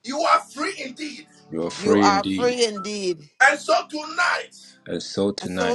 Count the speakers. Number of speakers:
3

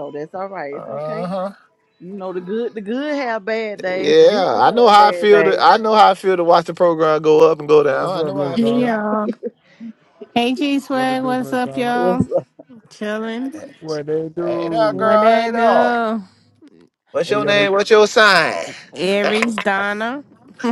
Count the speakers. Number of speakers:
4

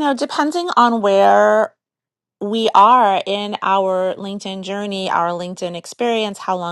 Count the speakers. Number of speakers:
1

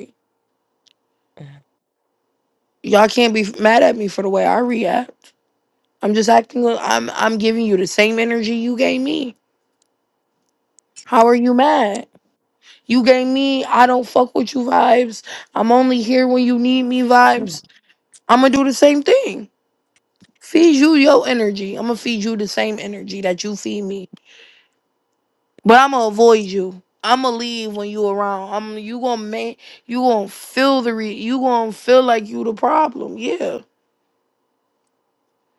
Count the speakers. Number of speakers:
1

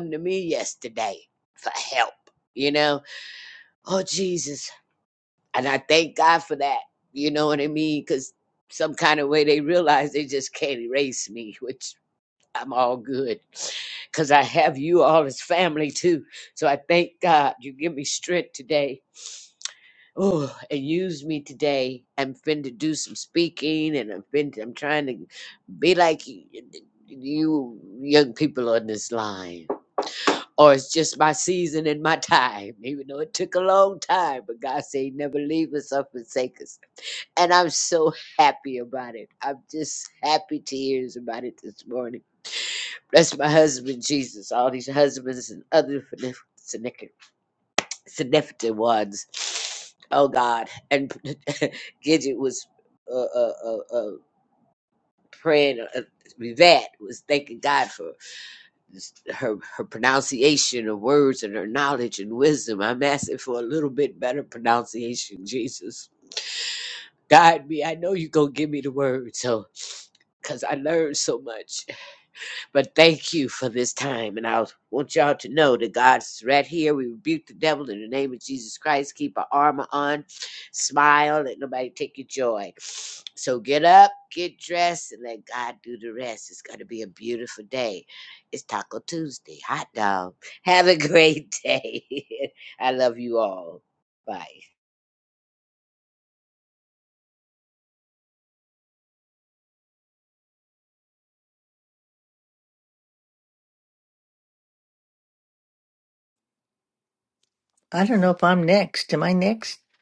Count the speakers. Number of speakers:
2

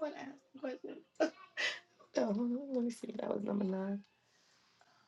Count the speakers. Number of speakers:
1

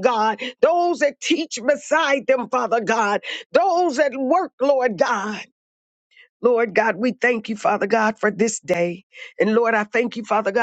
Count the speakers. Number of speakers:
1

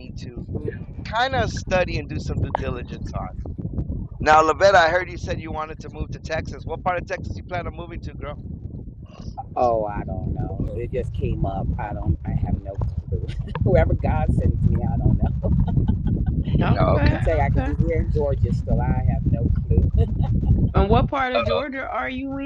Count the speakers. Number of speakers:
3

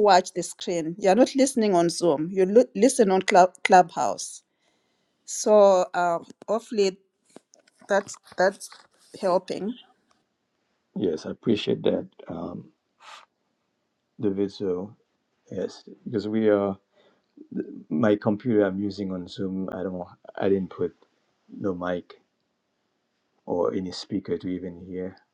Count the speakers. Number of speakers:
2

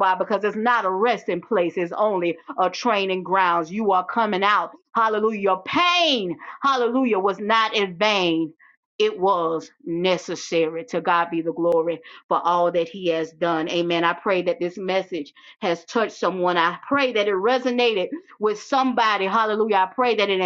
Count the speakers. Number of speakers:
1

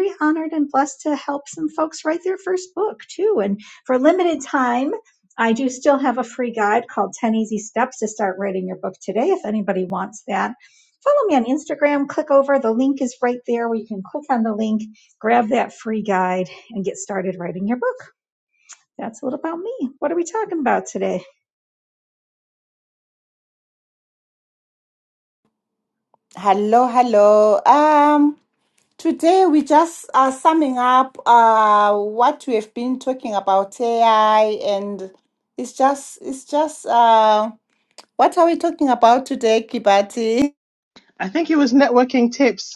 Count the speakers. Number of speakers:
3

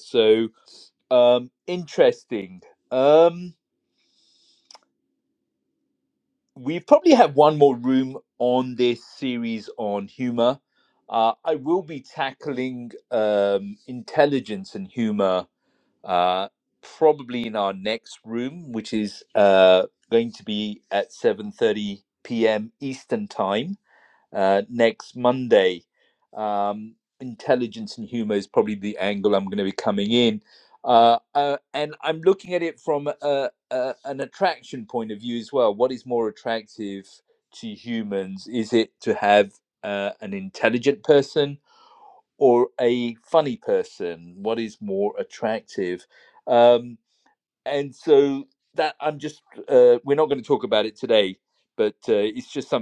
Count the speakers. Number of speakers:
1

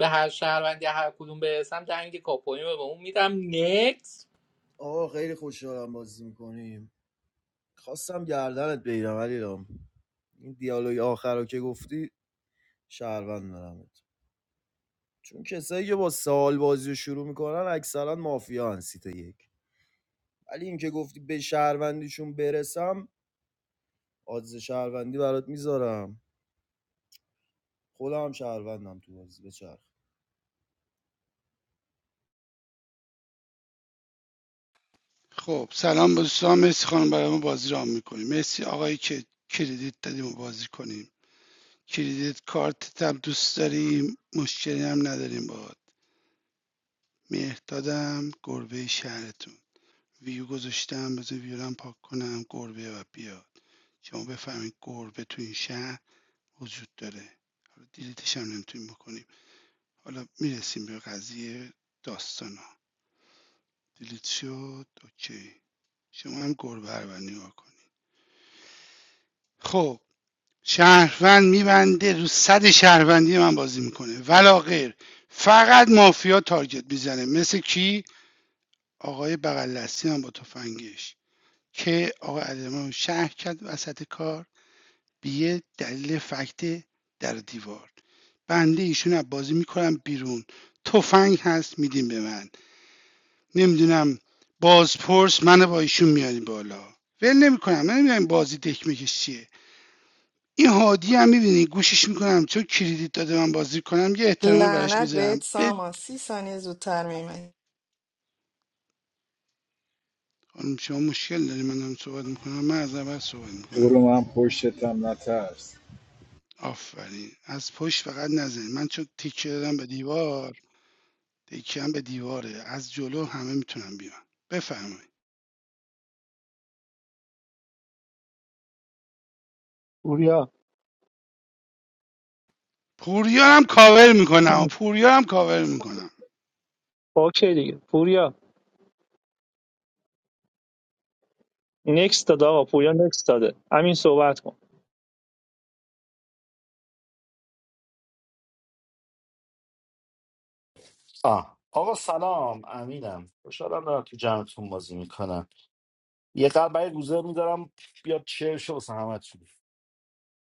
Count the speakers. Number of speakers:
7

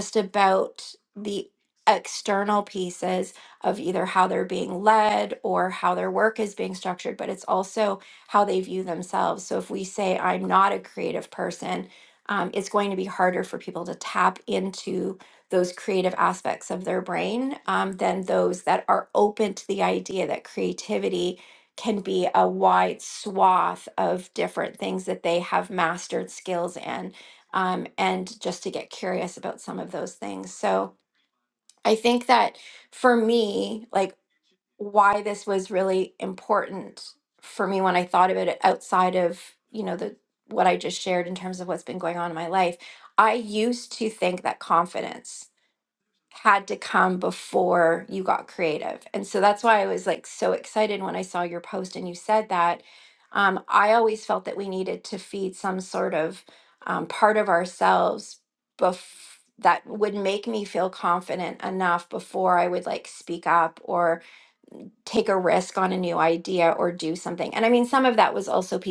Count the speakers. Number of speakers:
1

